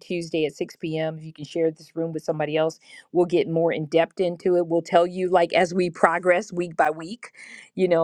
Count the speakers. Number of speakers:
one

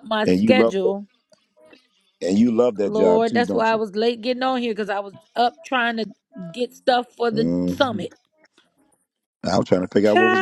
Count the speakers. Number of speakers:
two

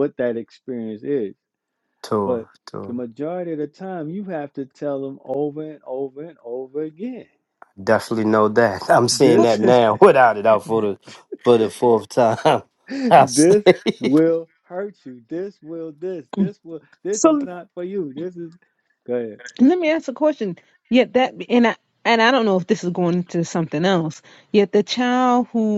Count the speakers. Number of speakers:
three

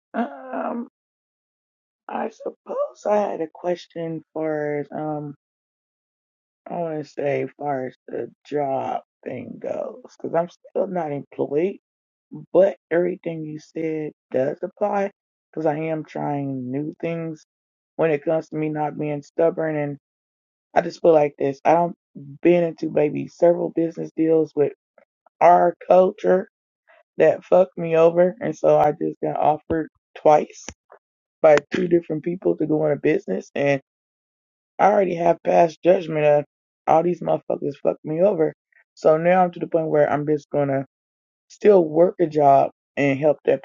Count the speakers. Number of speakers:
one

